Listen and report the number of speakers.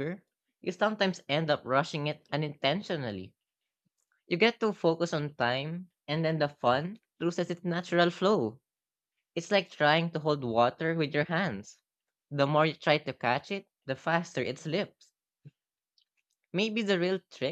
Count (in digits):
1